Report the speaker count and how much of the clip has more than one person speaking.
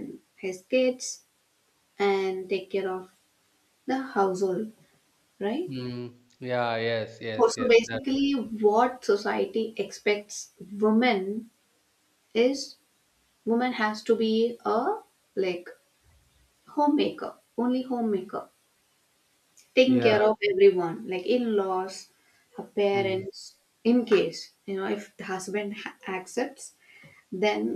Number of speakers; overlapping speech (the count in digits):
2, about 5%